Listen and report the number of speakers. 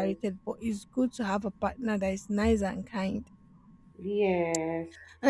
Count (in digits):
2